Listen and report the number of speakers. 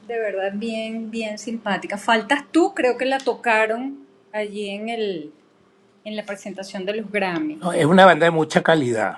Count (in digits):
2